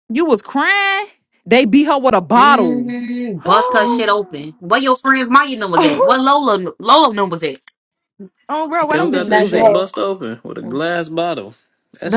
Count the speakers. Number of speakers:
3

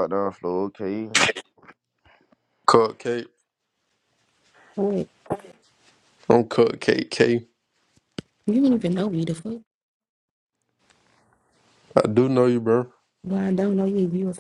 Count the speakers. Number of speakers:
3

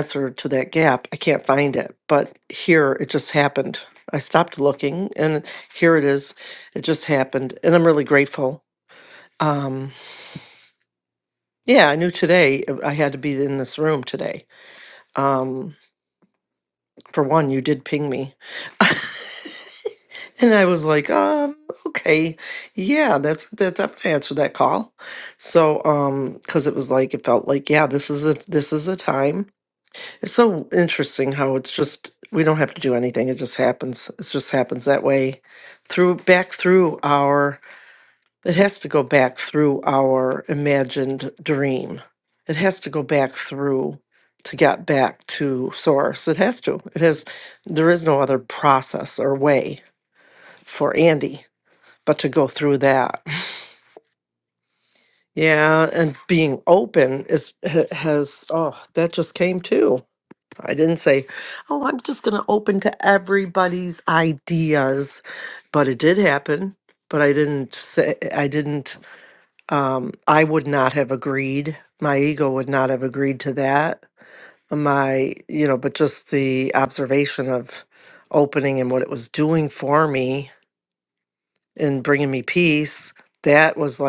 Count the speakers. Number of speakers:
1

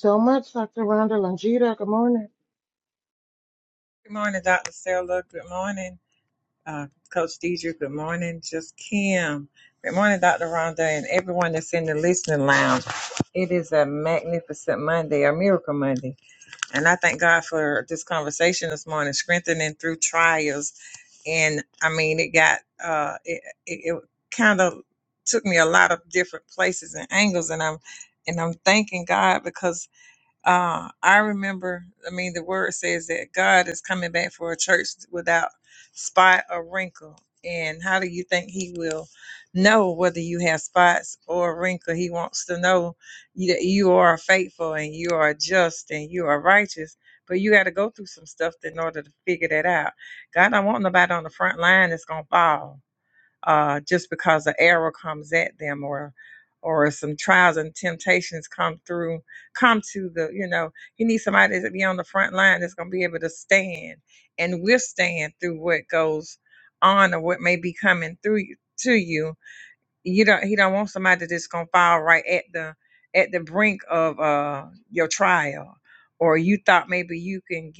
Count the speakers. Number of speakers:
2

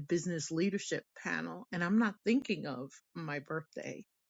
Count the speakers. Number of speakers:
1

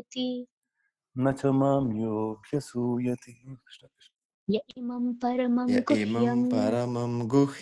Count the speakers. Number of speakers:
3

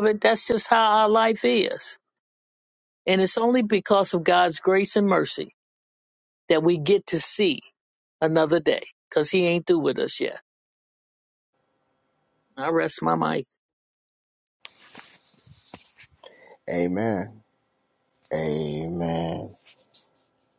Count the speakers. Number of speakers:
2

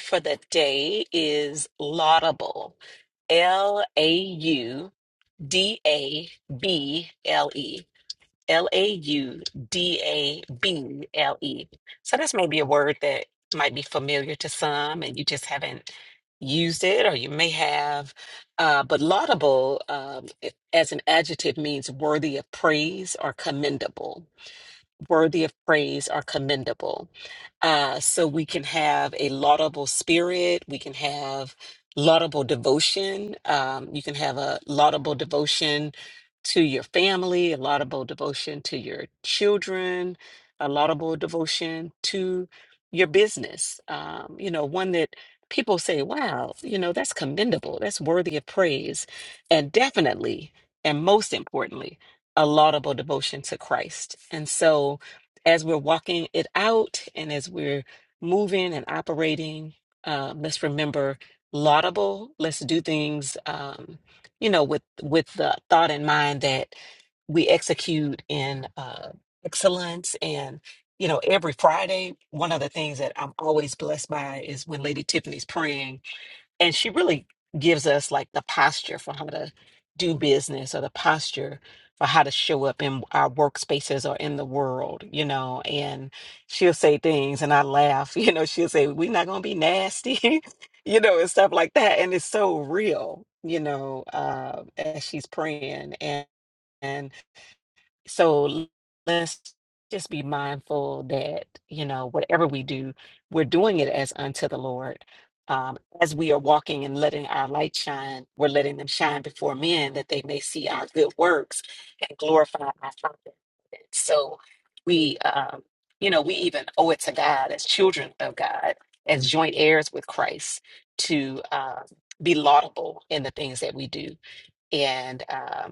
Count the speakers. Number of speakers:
1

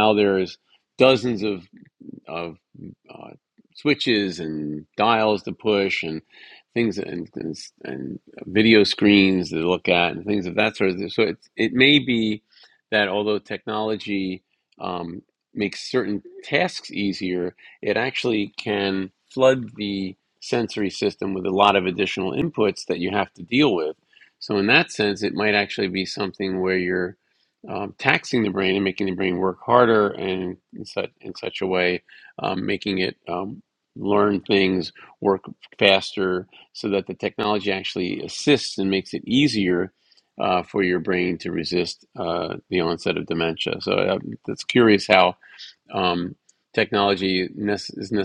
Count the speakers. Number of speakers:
1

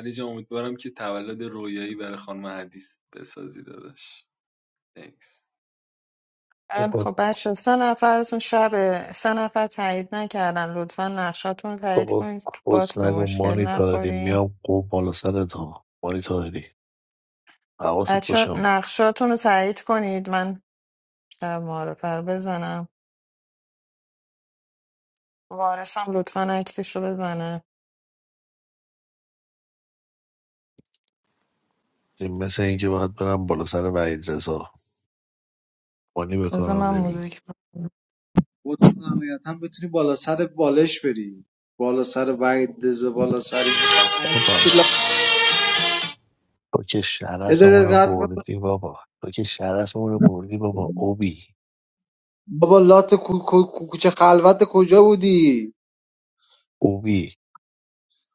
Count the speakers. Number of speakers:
4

